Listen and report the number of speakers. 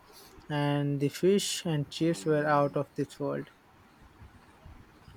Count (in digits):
1